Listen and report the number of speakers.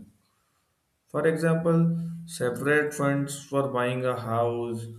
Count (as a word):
one